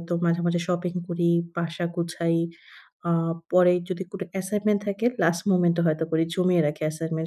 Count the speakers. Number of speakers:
1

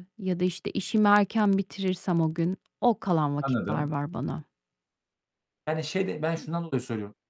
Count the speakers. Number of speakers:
2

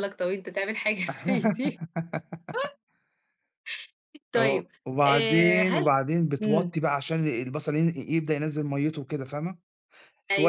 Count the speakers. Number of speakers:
2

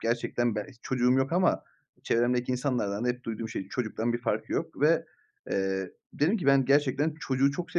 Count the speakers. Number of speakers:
1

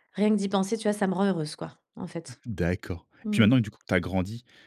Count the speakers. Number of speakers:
2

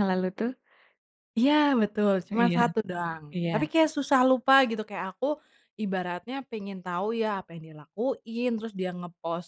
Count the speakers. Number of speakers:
2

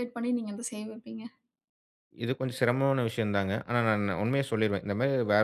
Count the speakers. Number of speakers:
2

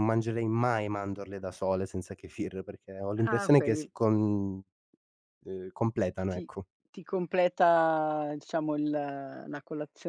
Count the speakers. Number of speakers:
2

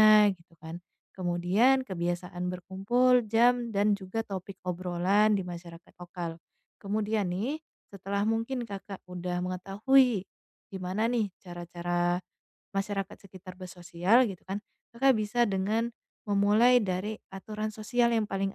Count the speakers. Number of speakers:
1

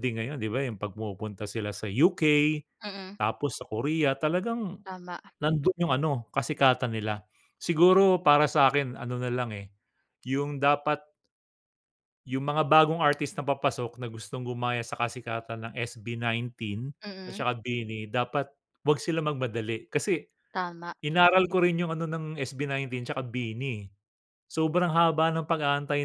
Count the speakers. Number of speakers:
2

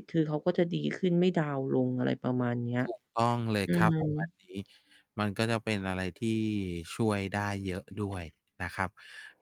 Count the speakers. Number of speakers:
2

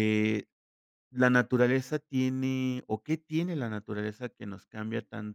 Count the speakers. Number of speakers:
1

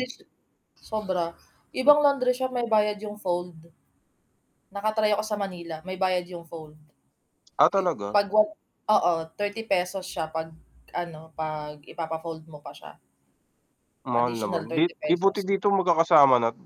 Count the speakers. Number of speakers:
2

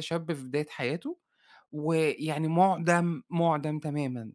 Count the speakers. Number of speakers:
1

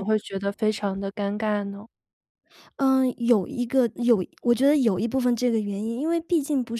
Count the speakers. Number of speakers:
2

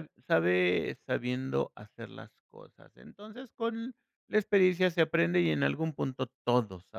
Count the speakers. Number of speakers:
1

